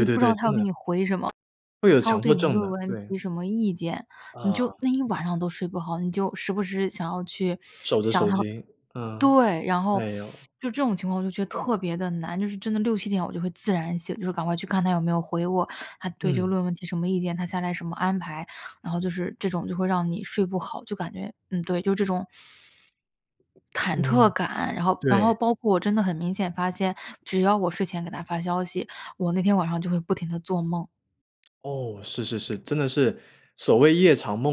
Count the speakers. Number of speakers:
two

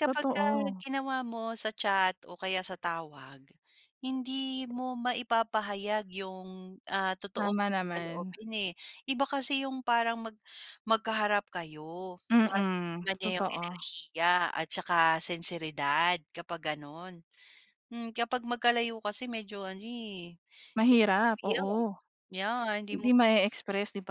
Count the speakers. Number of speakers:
two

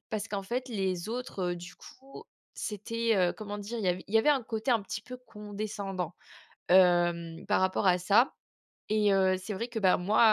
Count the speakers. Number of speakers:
one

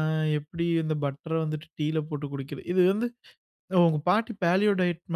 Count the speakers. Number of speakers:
one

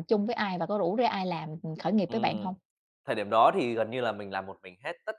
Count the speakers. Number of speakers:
two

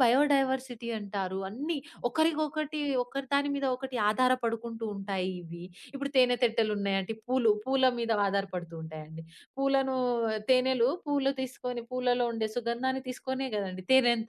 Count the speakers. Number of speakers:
one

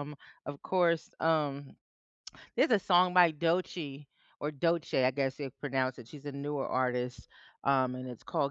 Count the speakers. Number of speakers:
one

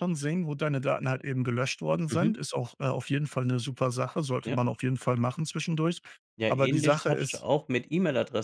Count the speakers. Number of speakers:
two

